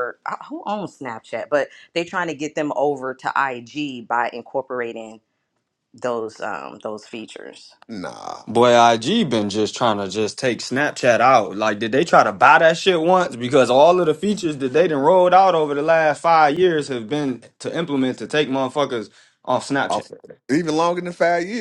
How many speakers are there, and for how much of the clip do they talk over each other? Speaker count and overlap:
three, about 1%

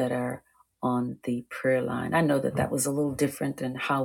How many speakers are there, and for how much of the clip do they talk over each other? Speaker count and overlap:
one, no overlap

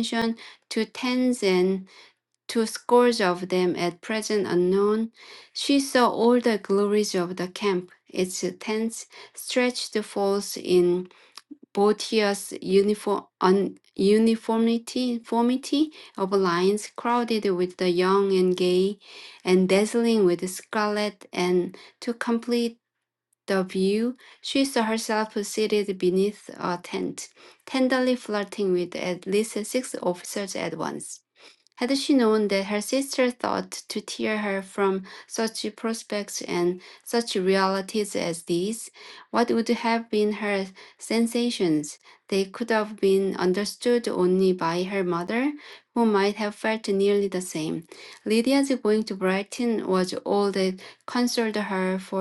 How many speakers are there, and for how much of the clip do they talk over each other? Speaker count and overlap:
one, no overlap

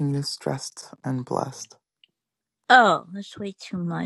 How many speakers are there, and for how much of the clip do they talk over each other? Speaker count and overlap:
two, no overlap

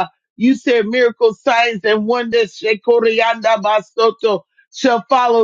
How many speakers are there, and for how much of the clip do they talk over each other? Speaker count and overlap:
one, no overlap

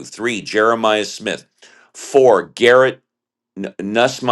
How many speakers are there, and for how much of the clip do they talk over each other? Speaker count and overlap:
one, no overlap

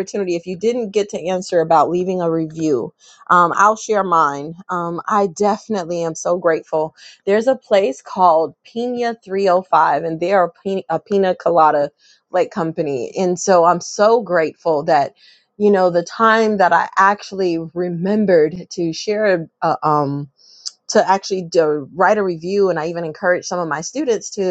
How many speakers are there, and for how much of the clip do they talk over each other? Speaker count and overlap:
one, no overlap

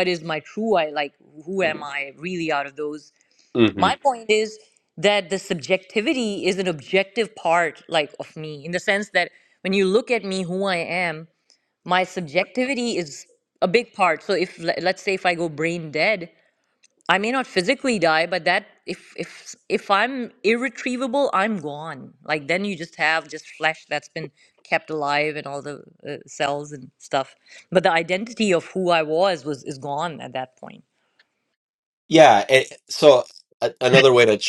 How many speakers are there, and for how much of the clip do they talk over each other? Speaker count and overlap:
two, no overlap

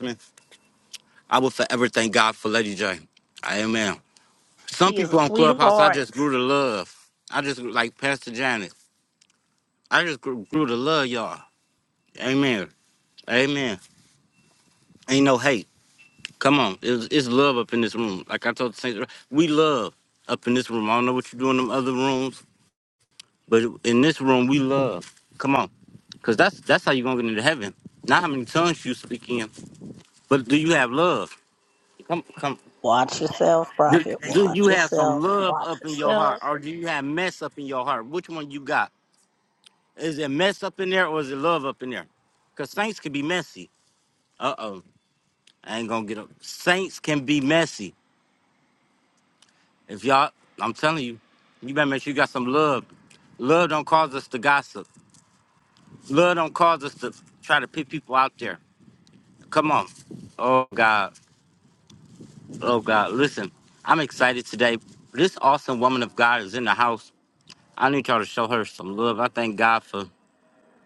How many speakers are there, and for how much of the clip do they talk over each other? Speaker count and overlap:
two, about 5%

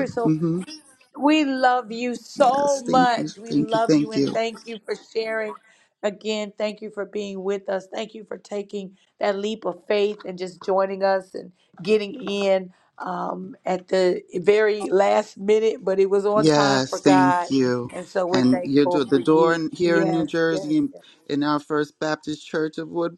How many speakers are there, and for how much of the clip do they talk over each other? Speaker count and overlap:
two, about 26%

